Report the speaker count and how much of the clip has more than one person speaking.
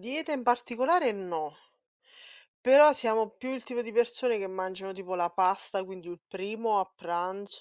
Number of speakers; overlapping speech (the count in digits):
1, no overlap